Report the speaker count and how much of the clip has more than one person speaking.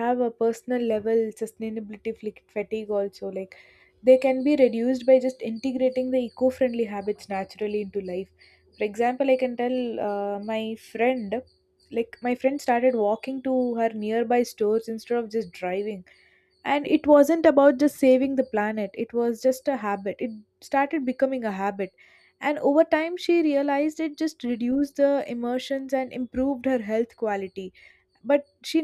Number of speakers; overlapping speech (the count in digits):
1, no overlap